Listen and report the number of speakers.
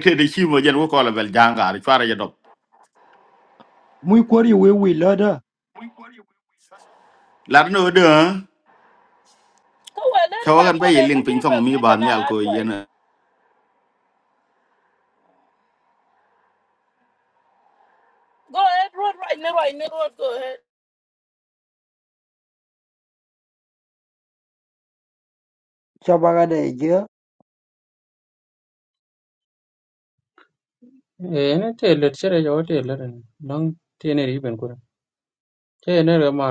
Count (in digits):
4